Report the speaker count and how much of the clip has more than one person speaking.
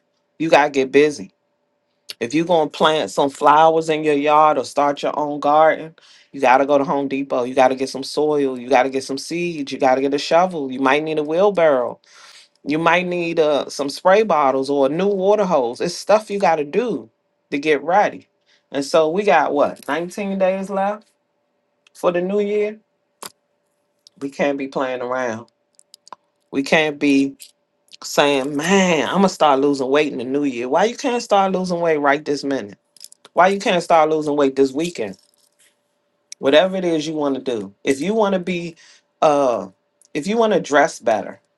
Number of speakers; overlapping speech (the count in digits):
1, no overlap